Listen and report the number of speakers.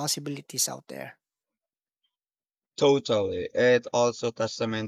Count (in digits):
2